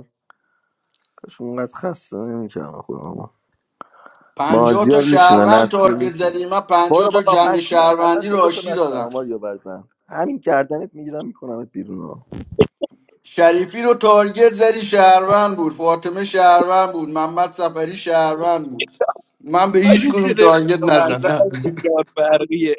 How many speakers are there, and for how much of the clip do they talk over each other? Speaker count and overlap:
3, about 20%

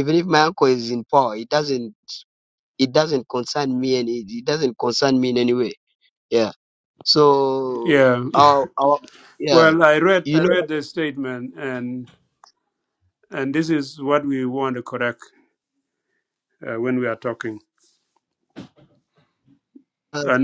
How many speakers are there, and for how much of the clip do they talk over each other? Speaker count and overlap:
2, about 6%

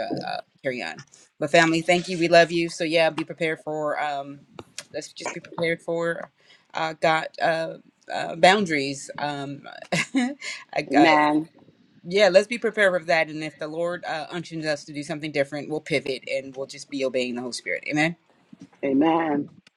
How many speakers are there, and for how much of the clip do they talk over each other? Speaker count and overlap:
2, about 2%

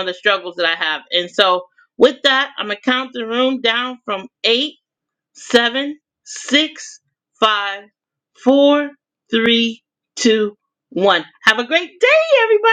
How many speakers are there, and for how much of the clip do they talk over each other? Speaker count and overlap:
1, no overlap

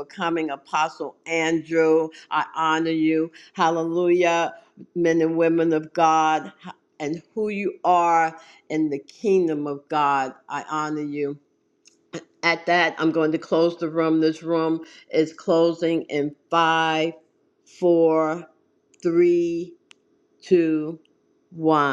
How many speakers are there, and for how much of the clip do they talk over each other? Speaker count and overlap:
1, no overlap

